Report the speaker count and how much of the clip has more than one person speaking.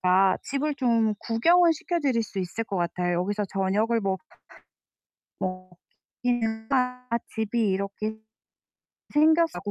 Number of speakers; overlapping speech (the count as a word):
one, no overlap